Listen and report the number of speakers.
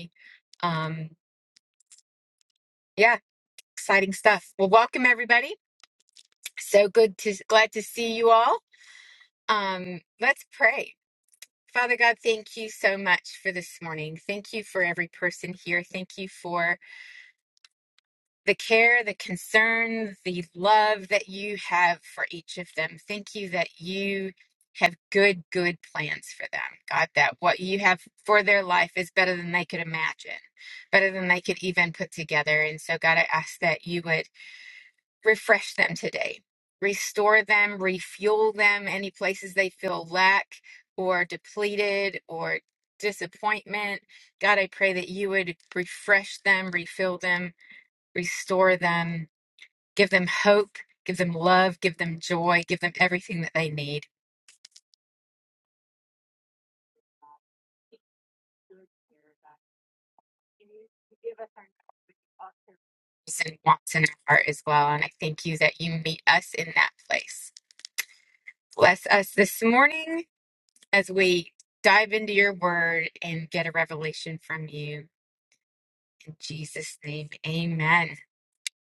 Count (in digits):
1